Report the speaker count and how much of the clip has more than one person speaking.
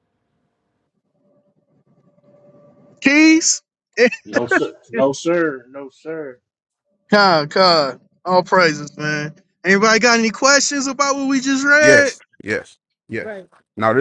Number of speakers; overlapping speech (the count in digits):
3, about 2%